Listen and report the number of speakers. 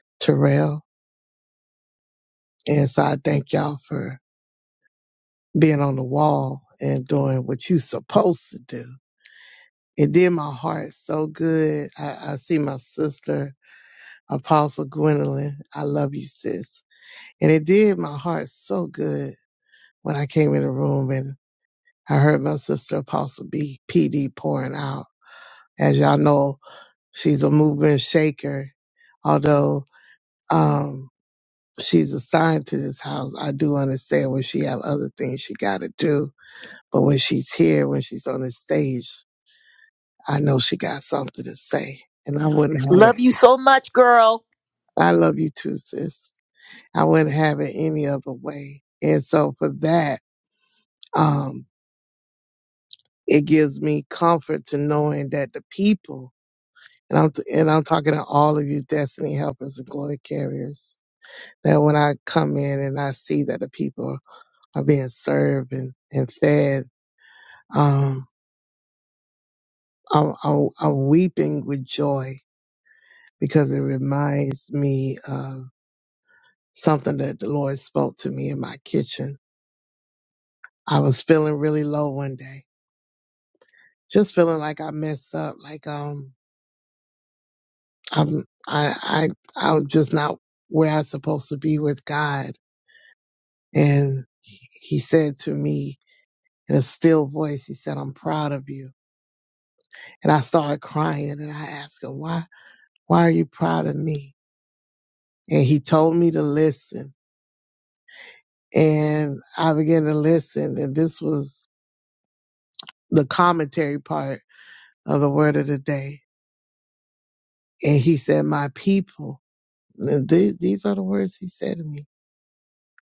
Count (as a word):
two